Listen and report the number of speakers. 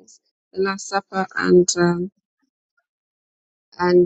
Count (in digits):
1